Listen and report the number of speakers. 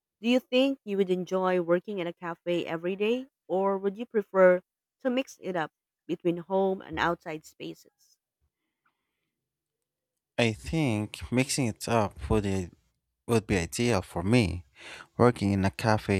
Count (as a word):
two